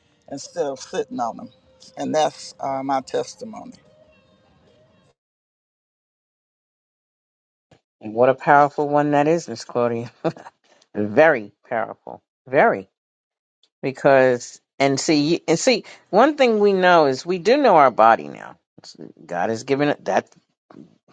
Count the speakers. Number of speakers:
two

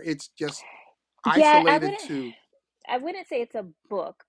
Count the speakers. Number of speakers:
two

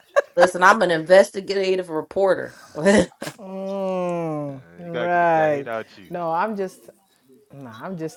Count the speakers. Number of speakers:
three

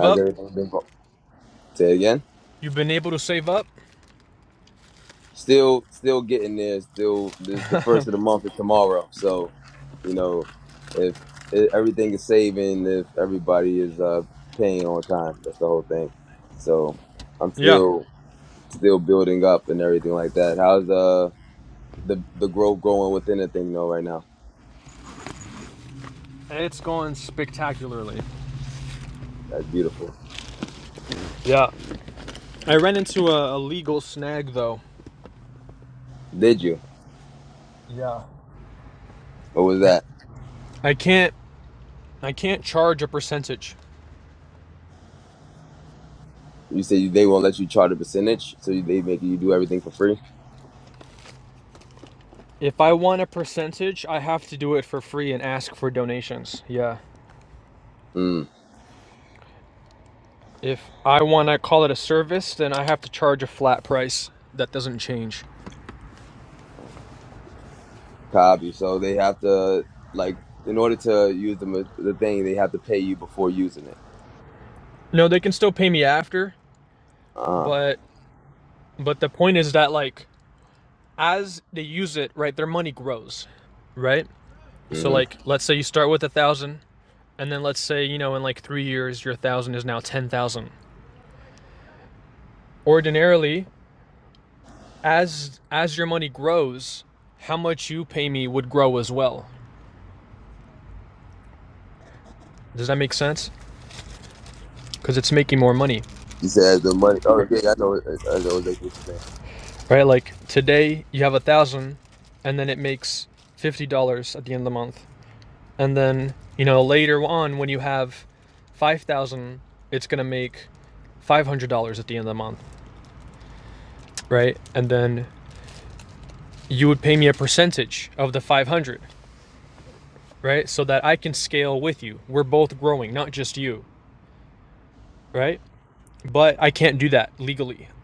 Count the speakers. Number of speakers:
two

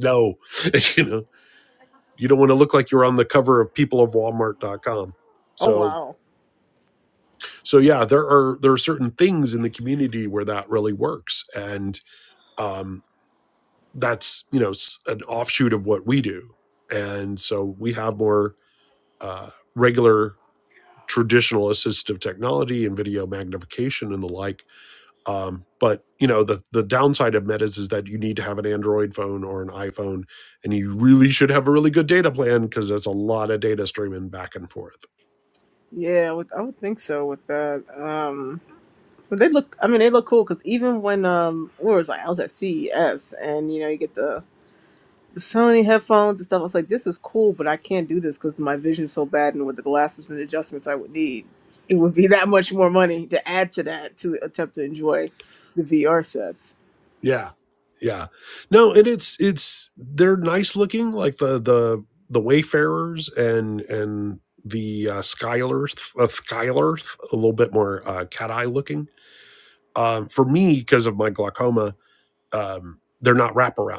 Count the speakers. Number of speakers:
two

